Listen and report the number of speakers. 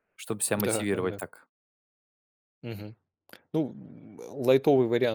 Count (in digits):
2